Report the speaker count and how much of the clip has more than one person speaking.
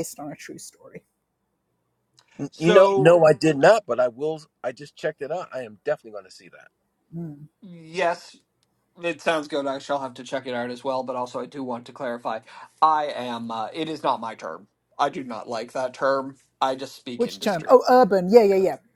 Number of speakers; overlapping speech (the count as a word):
three, about 6%